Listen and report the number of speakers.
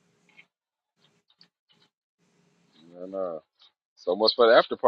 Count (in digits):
1